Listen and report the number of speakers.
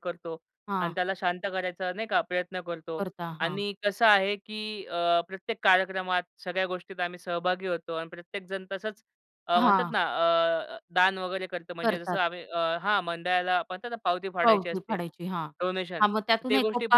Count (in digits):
2